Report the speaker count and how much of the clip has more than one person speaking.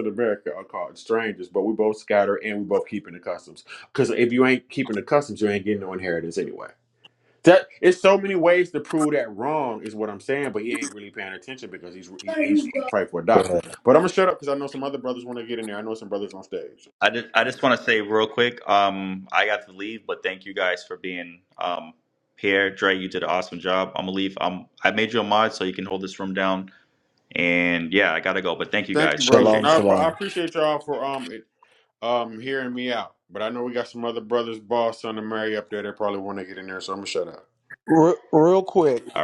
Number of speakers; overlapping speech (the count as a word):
three, about 4%